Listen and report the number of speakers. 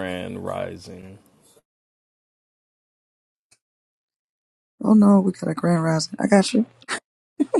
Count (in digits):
2